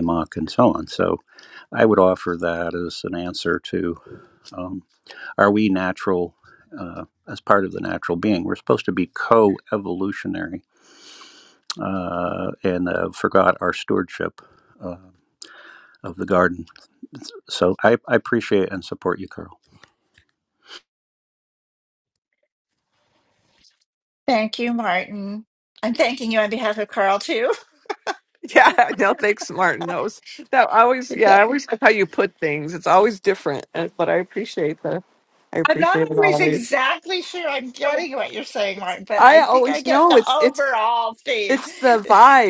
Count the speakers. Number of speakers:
three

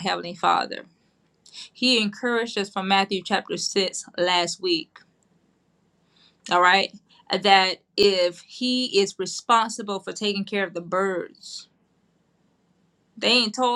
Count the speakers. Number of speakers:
one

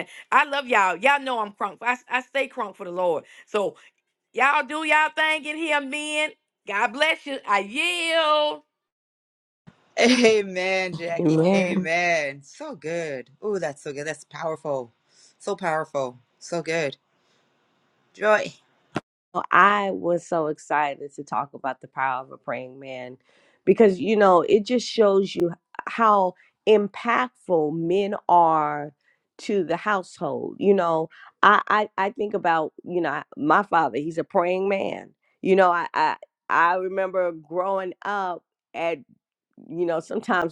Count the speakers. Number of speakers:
three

